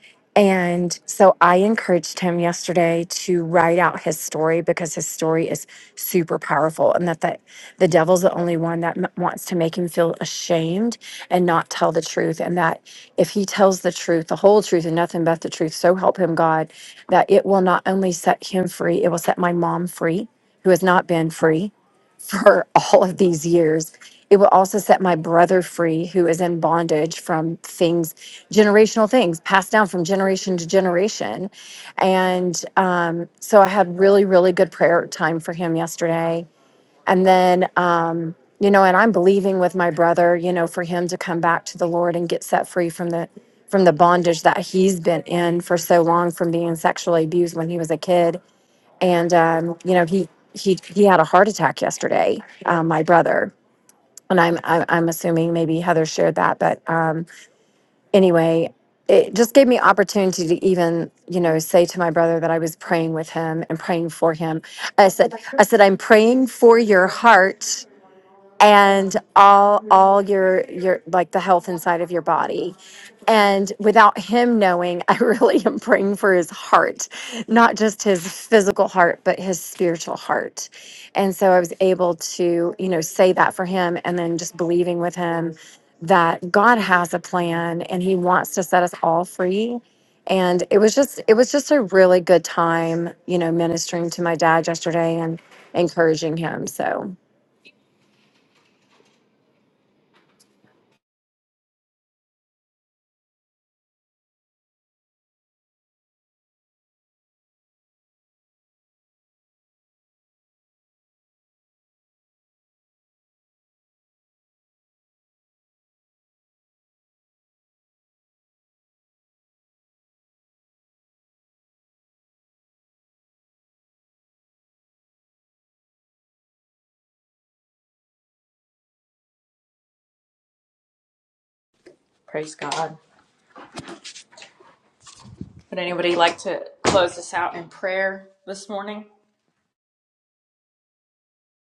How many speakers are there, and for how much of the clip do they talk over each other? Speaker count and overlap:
two, no overlap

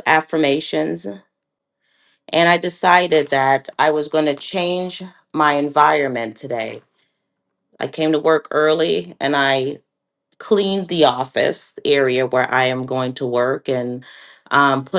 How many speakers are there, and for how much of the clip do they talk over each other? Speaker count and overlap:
one, no overlap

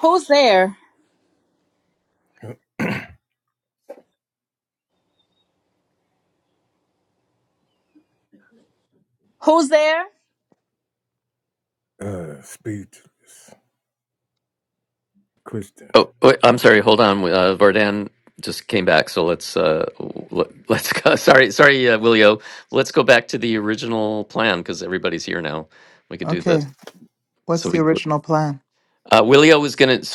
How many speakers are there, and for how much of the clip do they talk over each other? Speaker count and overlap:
four, about 2%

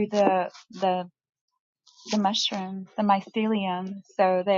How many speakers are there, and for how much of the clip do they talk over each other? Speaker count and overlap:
one, no overlap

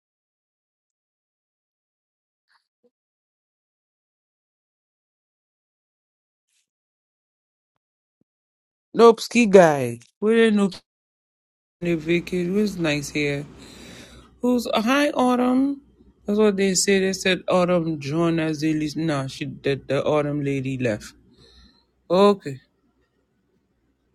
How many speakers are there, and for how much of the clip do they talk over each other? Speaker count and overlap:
one, no overlap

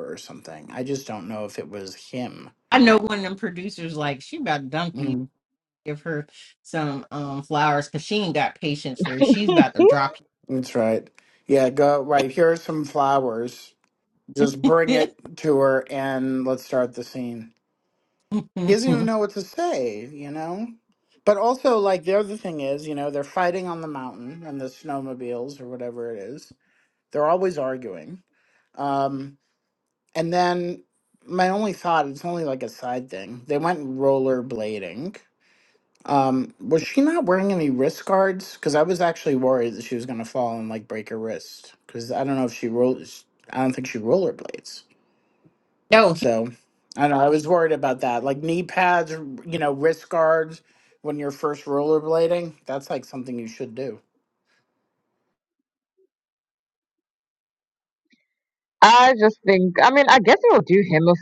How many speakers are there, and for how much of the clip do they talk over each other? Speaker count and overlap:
three, about 1%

